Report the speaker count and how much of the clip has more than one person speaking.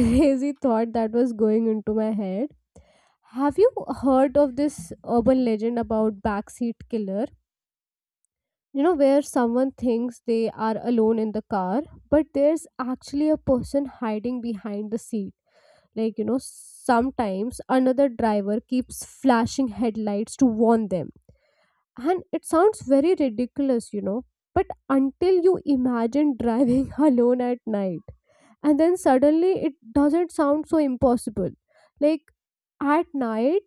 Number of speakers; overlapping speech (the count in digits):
1, no overlap